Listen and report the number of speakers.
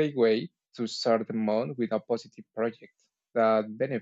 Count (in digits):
1